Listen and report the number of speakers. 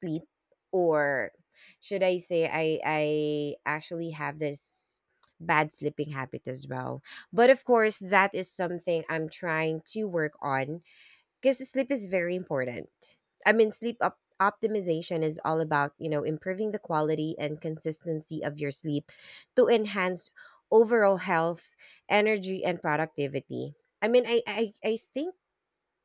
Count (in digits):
1